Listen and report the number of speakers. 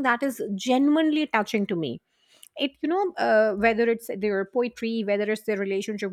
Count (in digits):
1